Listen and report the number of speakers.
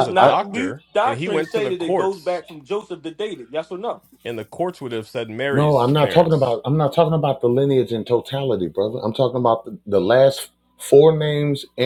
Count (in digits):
3